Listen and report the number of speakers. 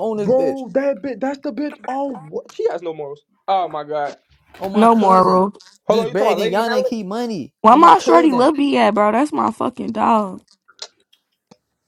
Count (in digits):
3